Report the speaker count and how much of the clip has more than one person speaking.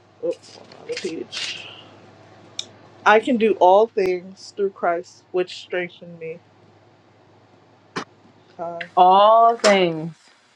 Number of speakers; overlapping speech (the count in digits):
2, no overlap